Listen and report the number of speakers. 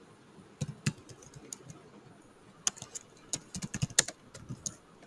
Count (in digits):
0